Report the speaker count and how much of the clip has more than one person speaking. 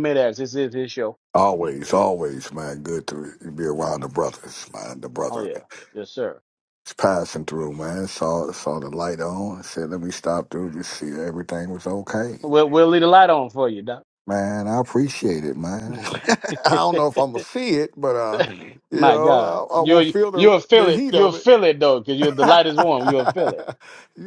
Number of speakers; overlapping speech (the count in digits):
2, about 11%